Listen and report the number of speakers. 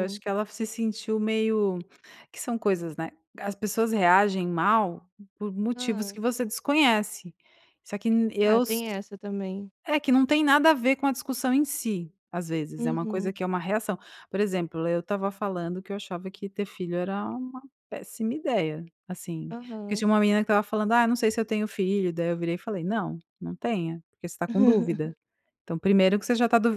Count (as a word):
two